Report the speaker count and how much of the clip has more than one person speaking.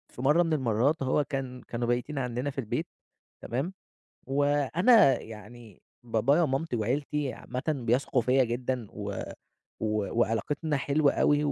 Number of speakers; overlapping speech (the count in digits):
1, no overlap